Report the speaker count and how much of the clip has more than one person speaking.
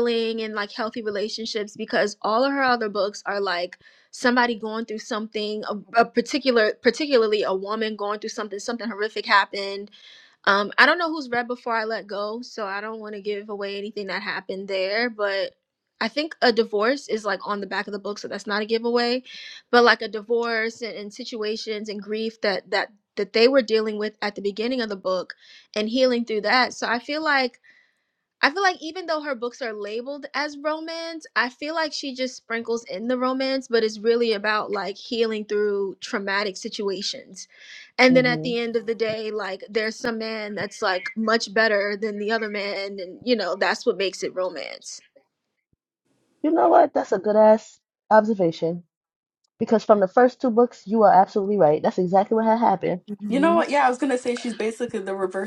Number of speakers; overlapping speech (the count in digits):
3, about 1%